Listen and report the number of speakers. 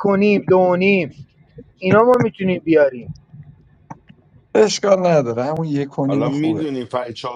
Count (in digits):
3